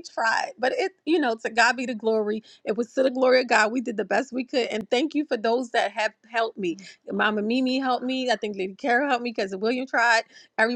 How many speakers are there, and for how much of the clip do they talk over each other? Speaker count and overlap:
1, no overlap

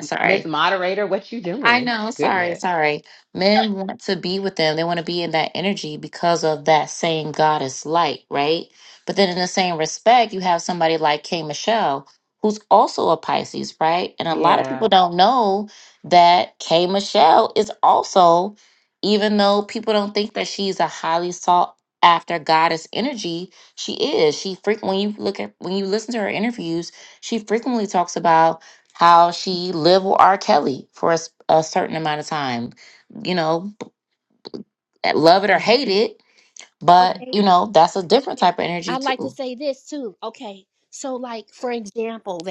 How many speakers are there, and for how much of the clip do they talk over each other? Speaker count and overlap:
3, about 6%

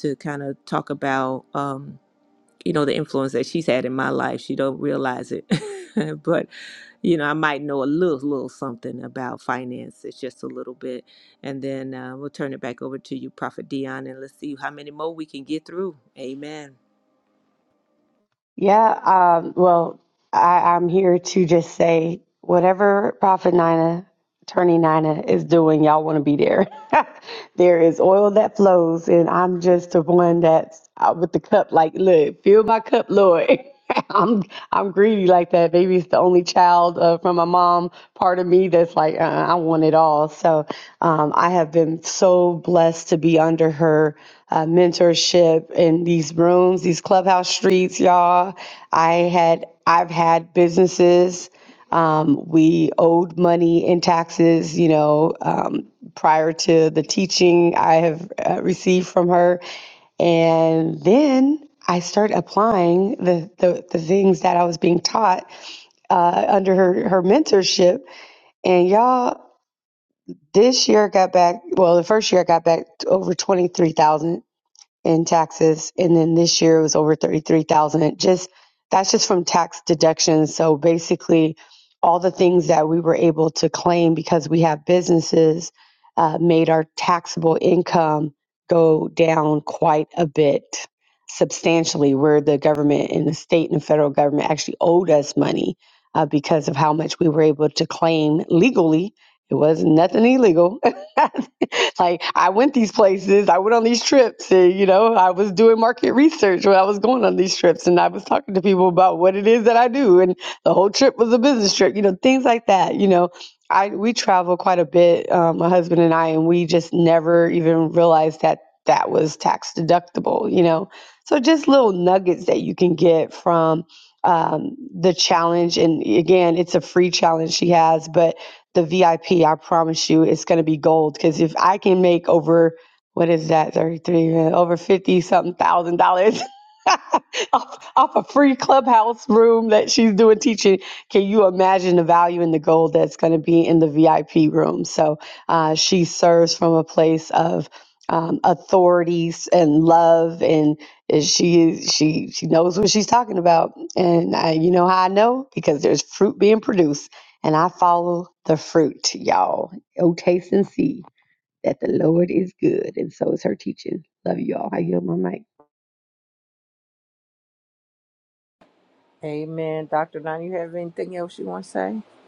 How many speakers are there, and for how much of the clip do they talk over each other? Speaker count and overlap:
3, no overlap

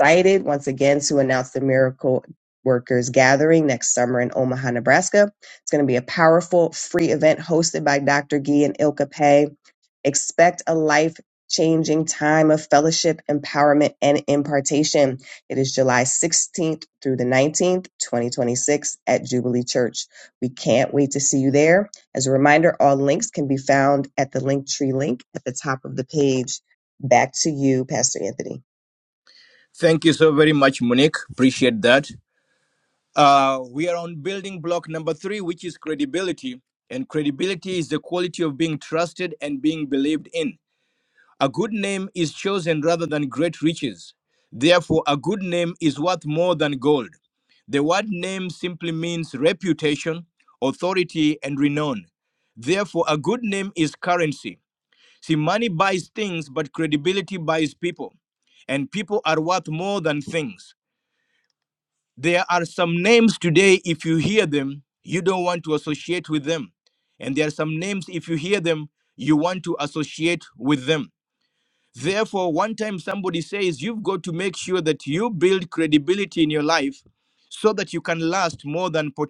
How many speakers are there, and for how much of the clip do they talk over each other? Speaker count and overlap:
2, no overlap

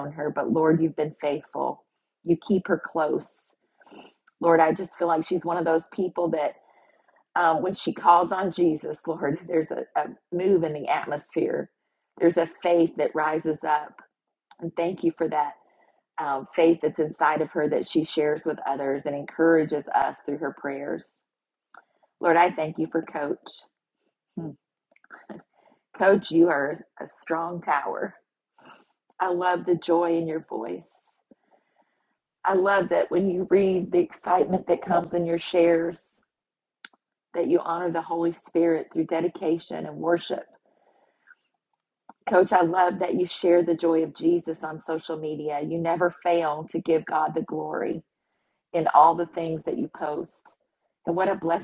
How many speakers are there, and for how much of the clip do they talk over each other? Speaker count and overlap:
1, no overlap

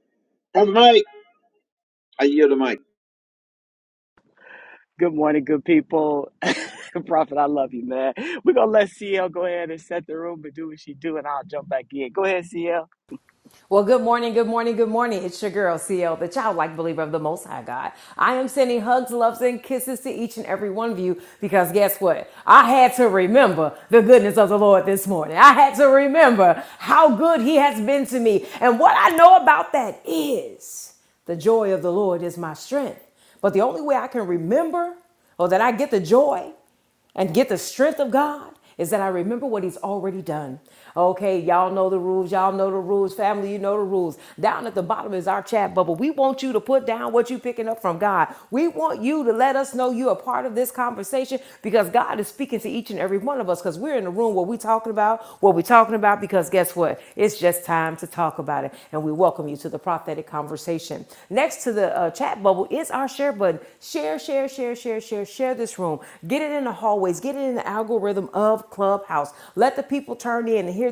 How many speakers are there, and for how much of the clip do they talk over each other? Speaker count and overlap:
3, no overlap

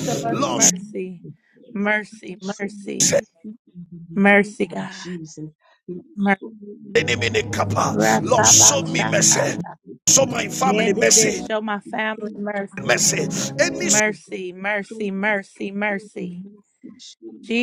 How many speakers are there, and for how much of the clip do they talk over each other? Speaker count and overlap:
3, about 53%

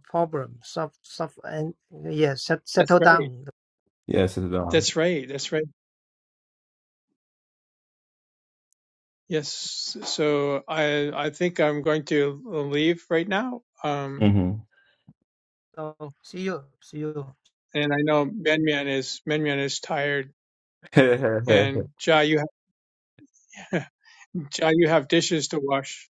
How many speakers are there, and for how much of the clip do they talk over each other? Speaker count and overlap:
3, about 3%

